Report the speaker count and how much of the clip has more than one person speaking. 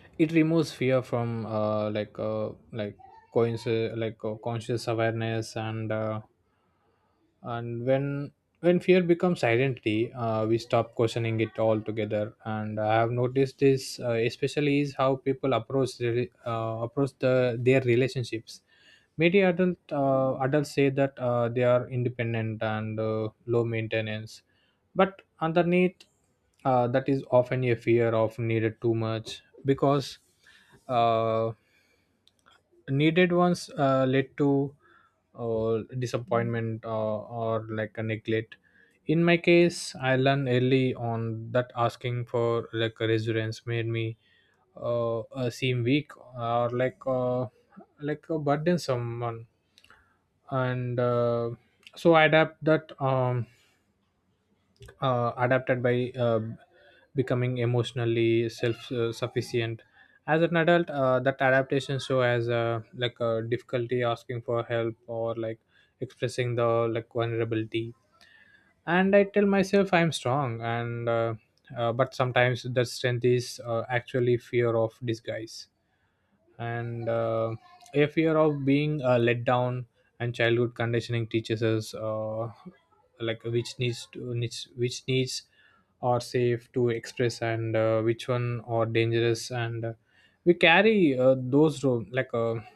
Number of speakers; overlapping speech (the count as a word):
one, no overlap